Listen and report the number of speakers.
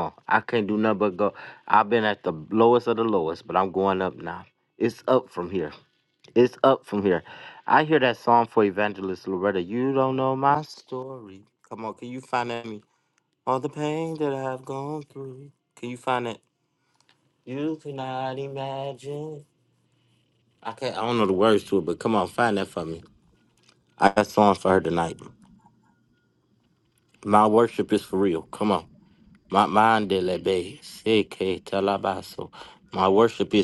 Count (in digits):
1